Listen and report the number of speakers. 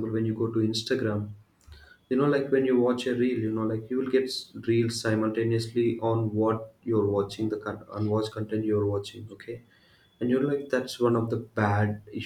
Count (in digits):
1